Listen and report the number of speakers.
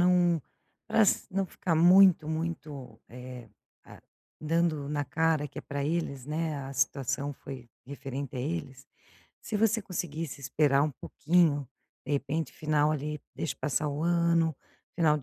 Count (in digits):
1